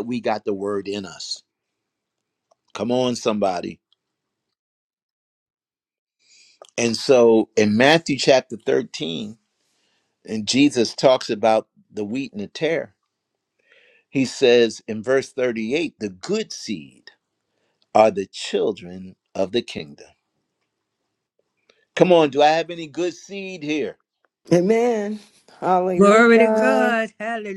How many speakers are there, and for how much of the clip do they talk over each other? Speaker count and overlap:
three, about 3%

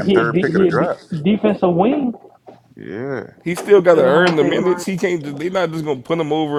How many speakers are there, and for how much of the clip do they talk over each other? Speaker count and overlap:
three, about 36%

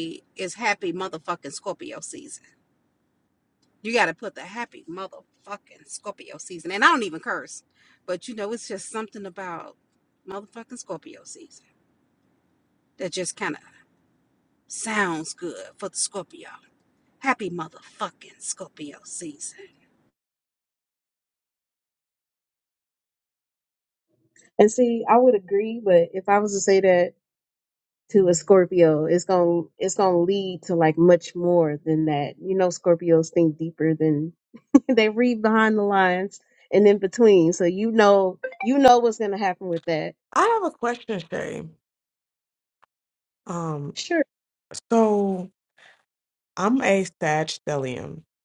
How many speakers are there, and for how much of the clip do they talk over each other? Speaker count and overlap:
three, no overlap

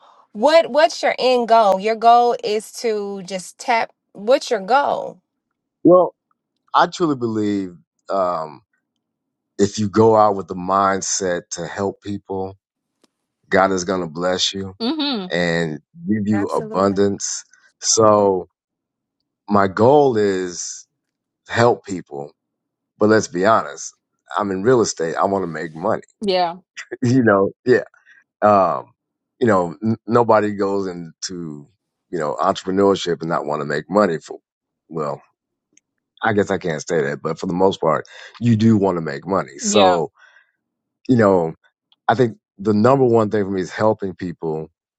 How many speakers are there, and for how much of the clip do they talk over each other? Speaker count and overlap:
three, about 2%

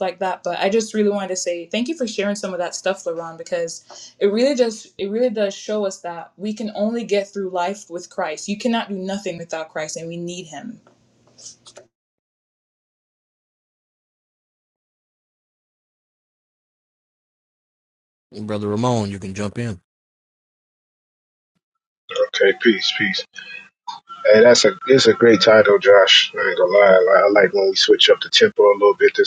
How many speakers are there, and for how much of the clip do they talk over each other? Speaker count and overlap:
three, no overlap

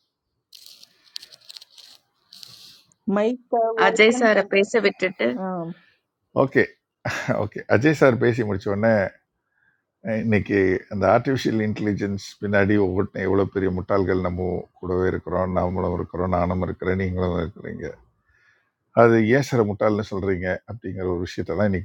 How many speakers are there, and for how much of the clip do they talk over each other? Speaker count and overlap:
three, about 3%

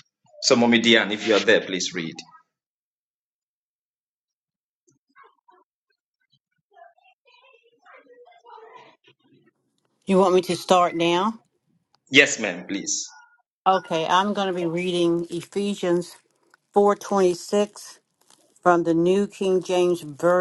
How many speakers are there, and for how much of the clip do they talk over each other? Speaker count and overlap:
two, no overlap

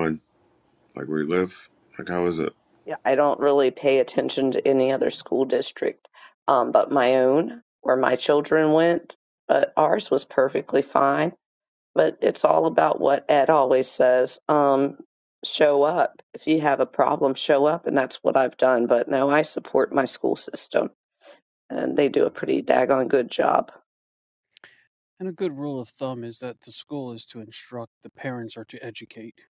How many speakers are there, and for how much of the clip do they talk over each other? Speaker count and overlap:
three, no overlap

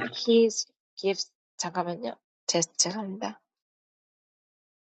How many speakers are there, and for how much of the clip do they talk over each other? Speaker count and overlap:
one, no overlap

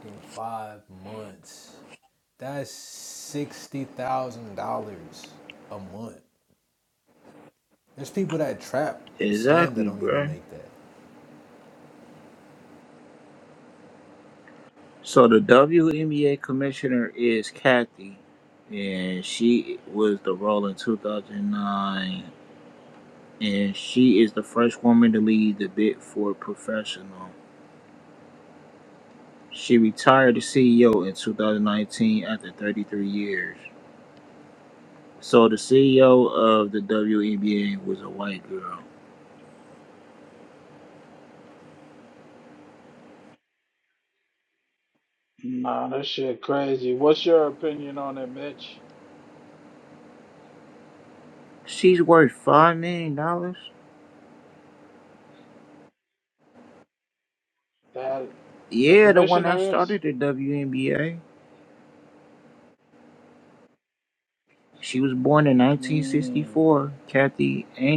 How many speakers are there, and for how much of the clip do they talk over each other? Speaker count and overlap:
three, about 4%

